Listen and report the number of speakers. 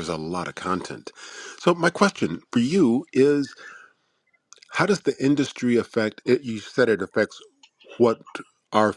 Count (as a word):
one